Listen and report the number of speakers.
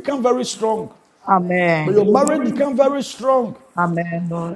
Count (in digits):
2